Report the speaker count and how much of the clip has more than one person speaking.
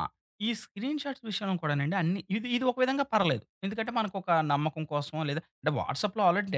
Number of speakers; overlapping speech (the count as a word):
one, no overlap